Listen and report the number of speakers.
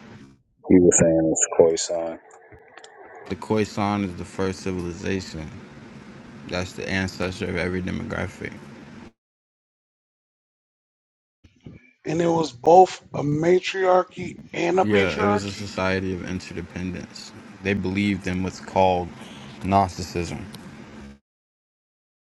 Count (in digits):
3